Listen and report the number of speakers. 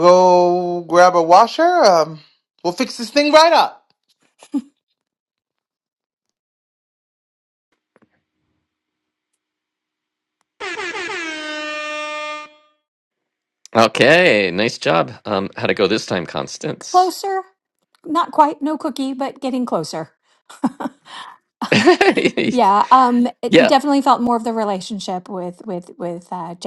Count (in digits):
3